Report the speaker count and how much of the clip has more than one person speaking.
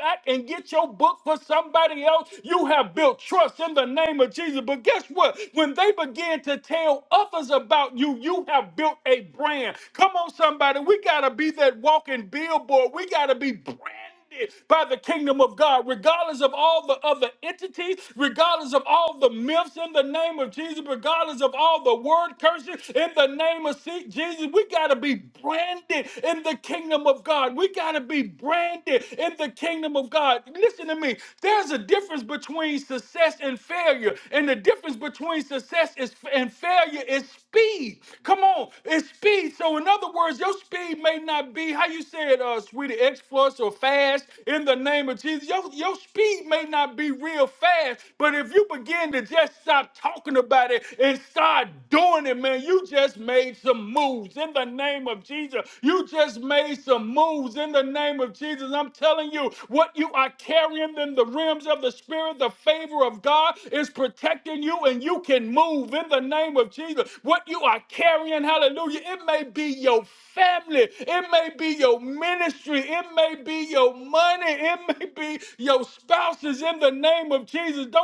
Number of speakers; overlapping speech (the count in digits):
1, no overlap